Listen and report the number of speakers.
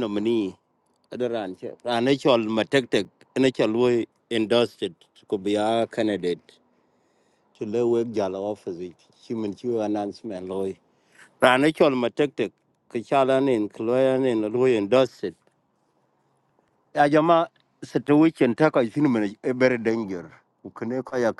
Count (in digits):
1